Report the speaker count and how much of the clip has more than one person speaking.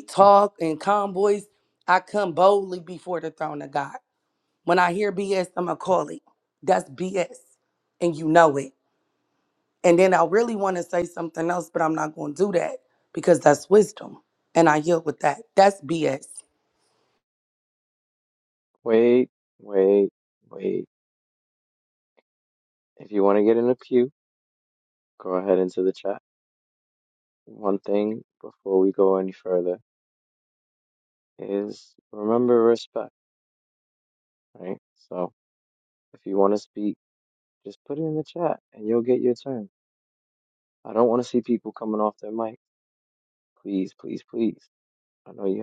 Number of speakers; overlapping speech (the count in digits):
2, no overlap